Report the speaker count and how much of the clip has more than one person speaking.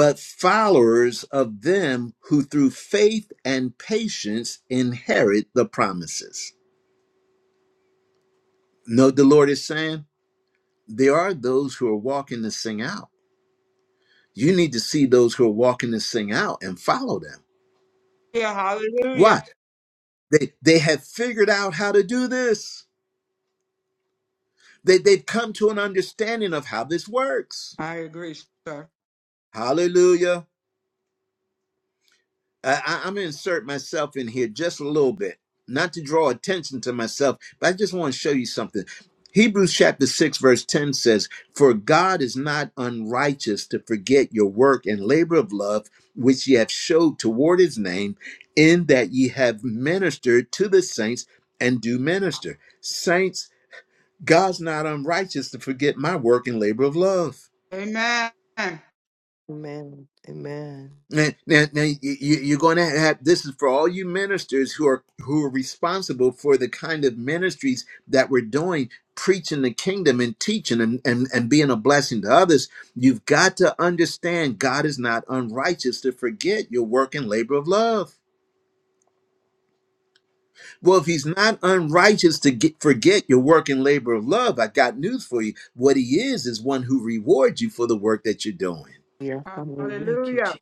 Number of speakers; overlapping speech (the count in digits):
3, about 1%